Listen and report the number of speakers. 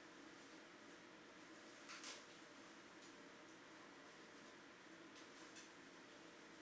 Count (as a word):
zero